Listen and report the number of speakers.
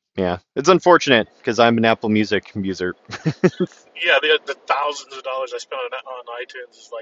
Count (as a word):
two